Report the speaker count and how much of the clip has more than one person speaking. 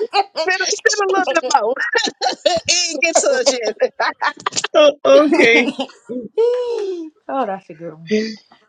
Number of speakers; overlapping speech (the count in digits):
3, no overlap